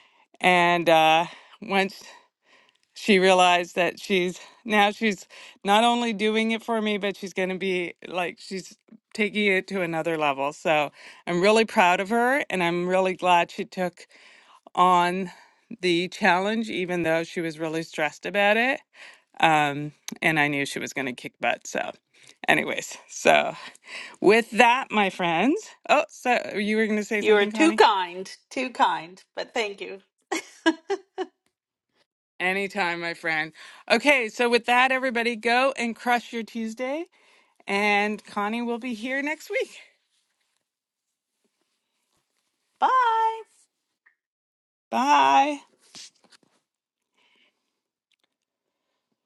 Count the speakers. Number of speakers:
two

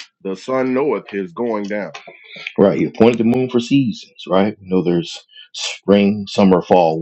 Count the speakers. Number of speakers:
two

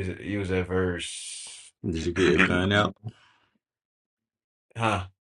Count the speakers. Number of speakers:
two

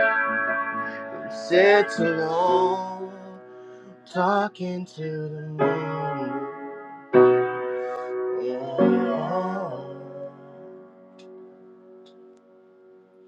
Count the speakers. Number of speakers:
one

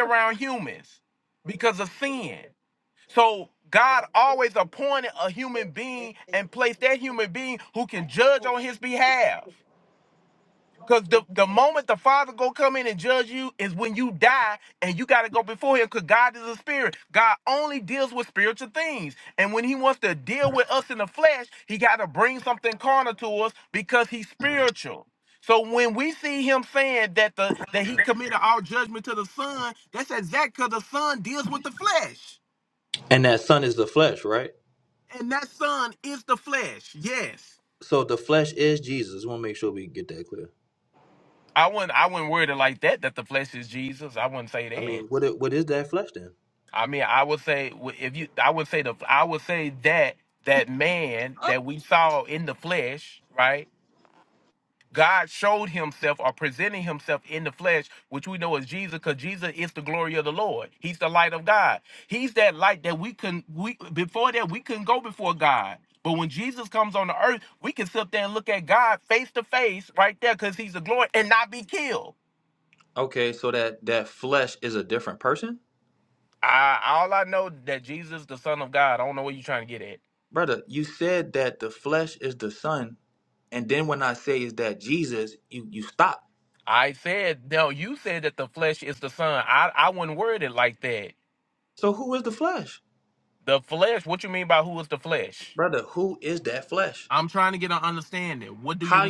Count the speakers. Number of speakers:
two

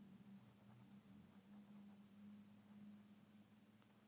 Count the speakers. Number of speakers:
zero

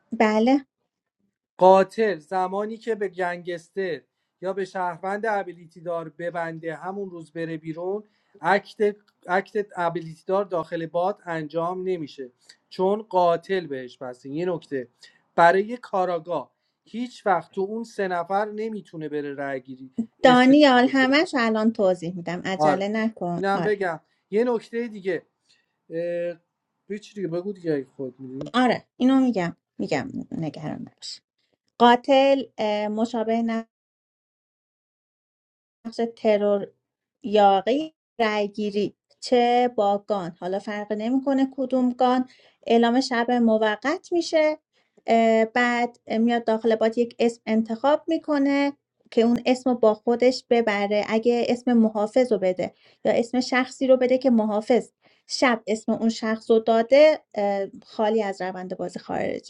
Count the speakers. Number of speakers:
two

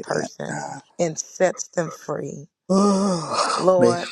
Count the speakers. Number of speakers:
two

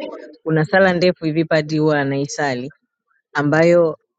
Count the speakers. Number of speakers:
one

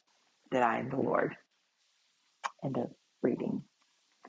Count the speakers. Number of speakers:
one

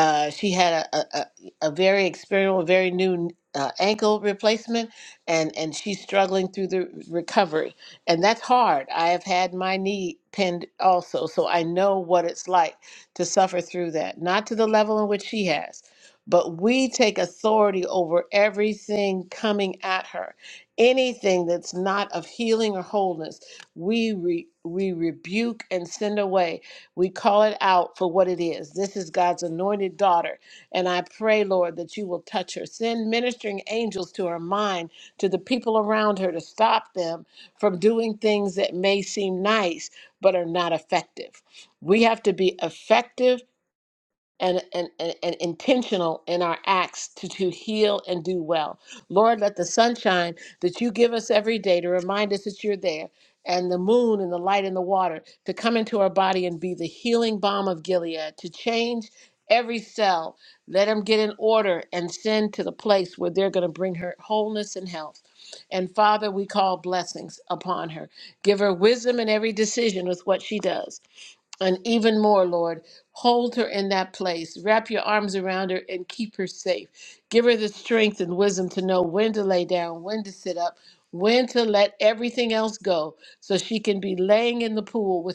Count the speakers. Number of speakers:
one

